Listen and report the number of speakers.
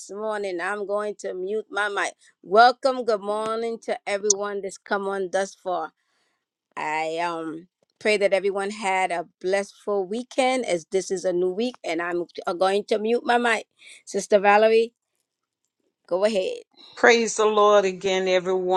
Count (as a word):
two